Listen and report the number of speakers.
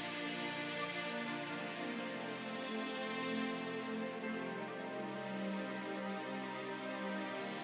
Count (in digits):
0